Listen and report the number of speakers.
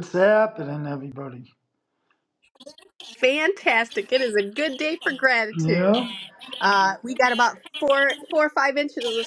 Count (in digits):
2